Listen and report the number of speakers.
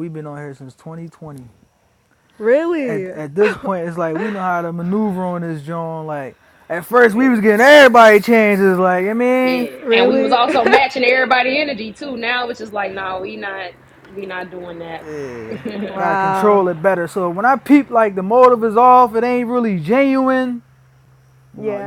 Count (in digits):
3